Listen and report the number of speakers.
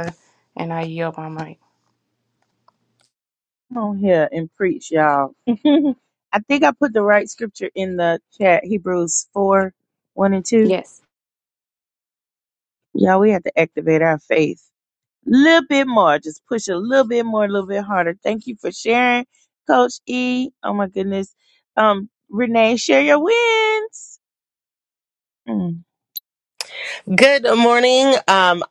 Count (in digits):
3